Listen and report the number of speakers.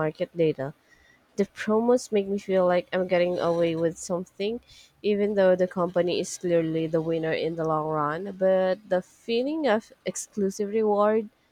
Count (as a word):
one